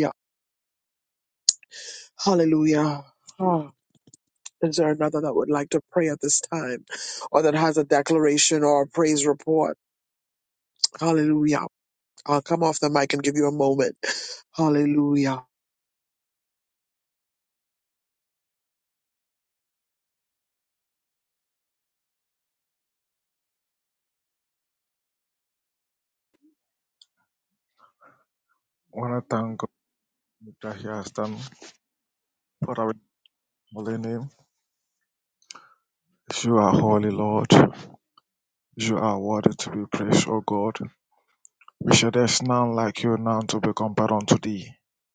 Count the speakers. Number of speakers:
2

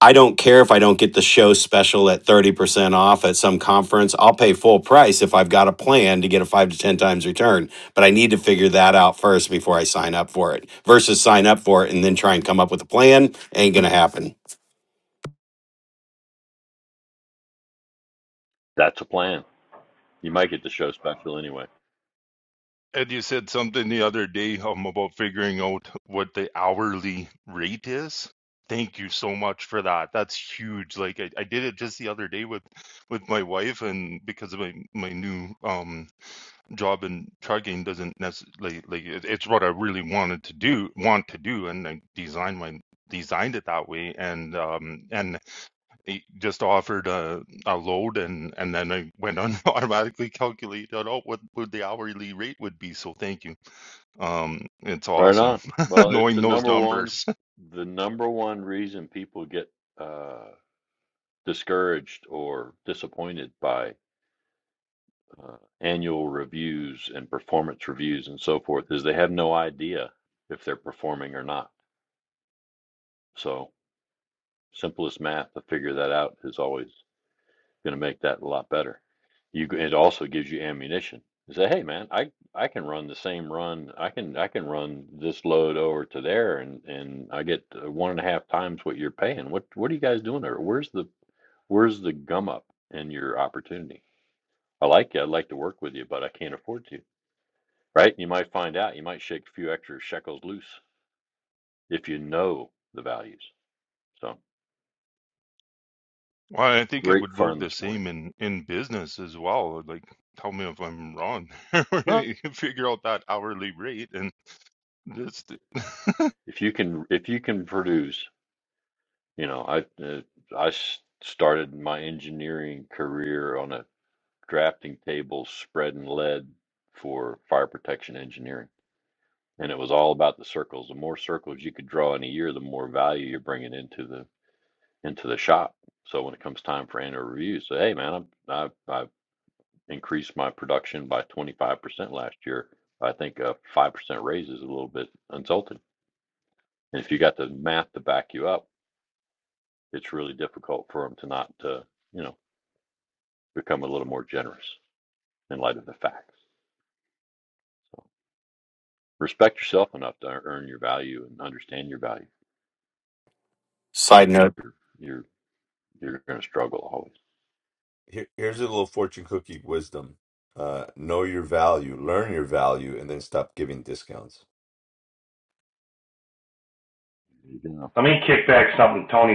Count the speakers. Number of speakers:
5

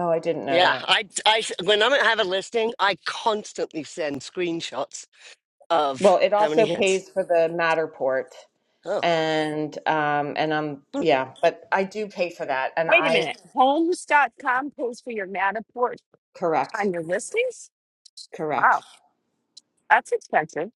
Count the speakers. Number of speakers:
3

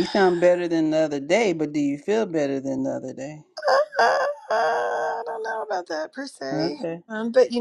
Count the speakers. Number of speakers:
2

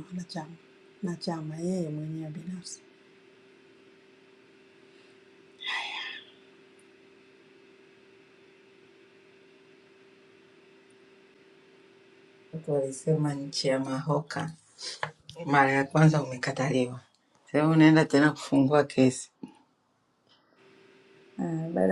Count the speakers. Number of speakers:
2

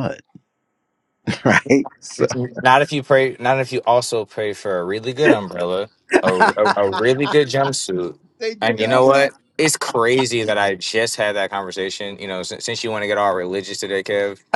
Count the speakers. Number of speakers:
2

